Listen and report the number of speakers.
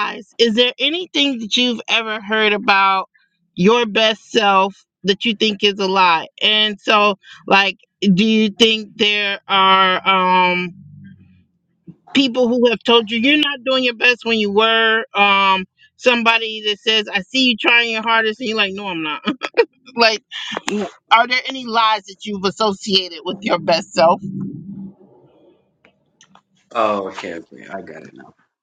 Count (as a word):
two